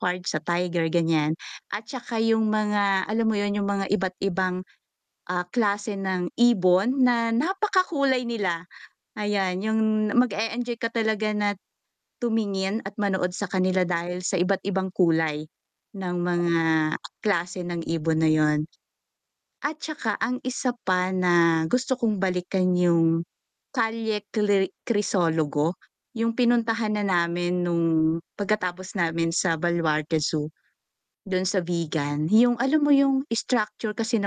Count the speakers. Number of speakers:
1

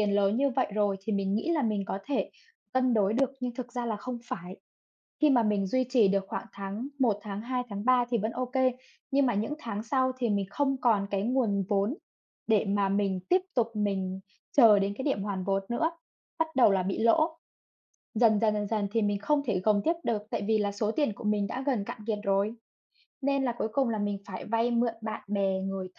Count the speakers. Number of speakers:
1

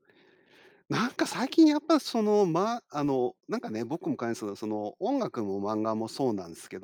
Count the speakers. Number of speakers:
1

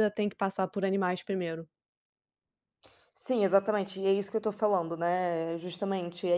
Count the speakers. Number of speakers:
2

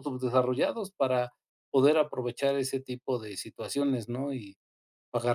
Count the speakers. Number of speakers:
1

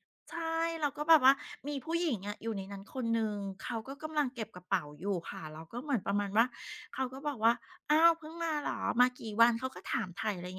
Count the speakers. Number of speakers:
1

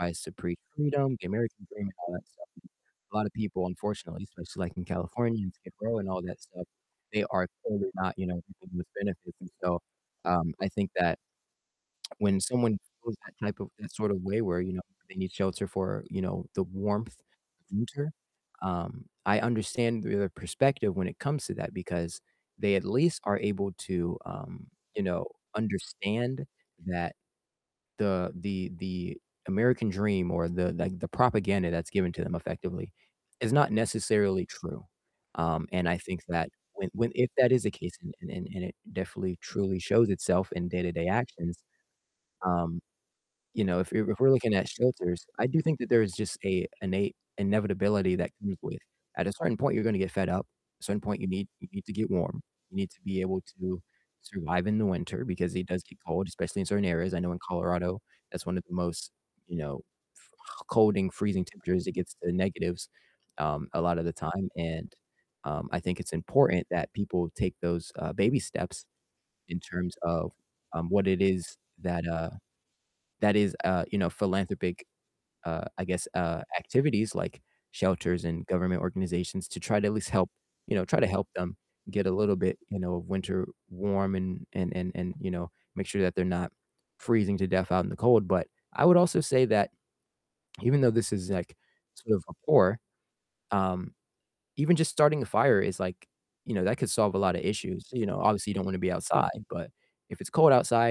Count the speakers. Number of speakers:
1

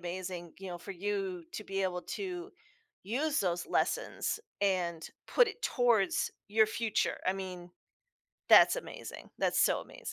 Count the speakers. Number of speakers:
1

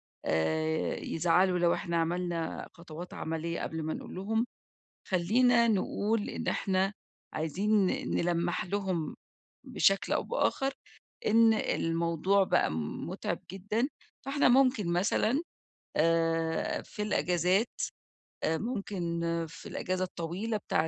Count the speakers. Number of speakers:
1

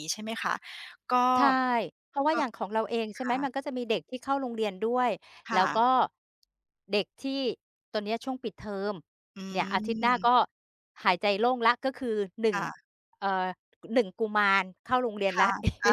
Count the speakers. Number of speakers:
2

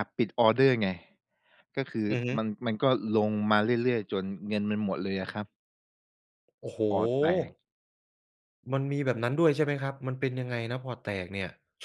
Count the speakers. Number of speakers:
2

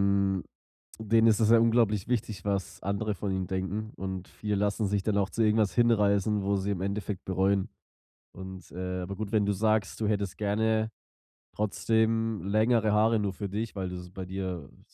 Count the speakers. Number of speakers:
1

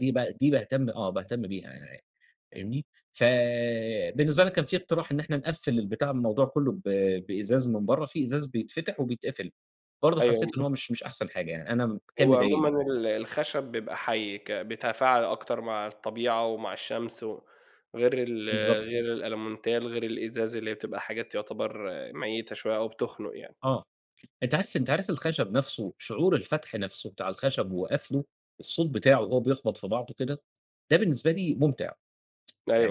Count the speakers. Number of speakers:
2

